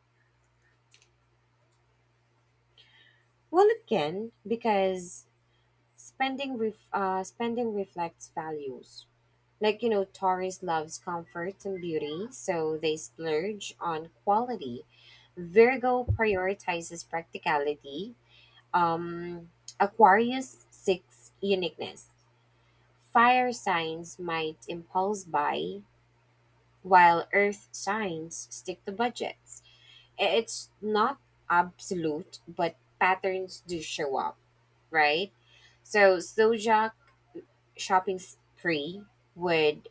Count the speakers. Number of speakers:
1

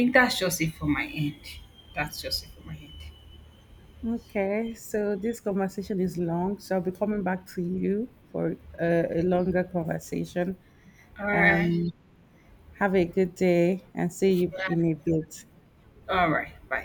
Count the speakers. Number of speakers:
2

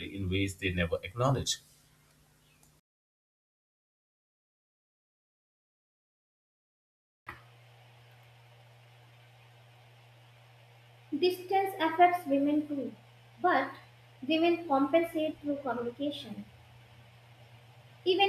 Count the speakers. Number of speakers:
2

